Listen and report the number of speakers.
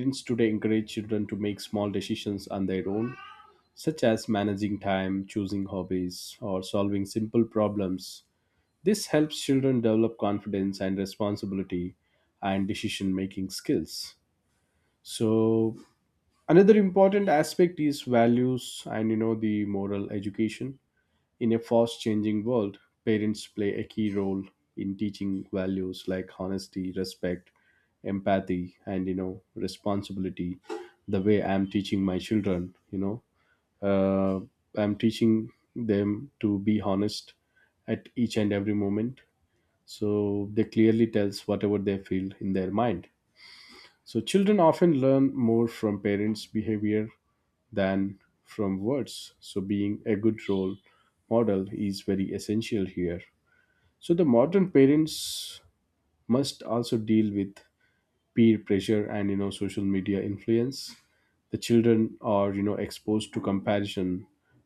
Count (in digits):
1